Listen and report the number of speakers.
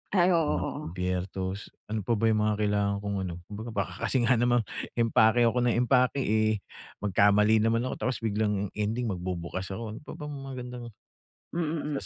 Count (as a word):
two